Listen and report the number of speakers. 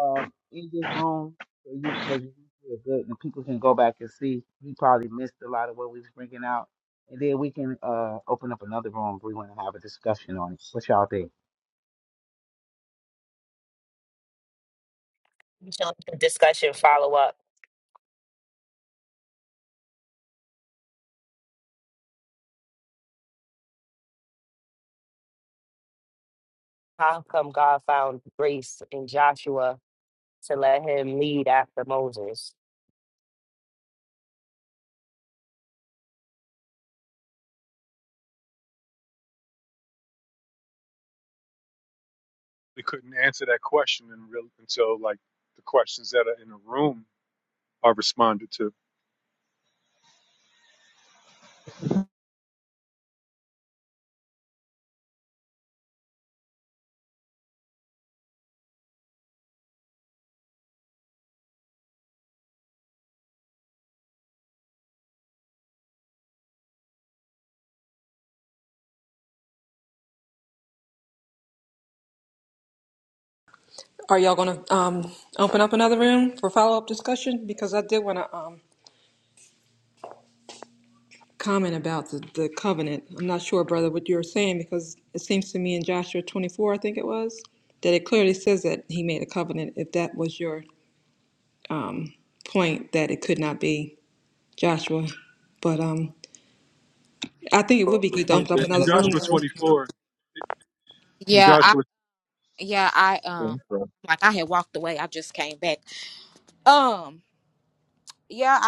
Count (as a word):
five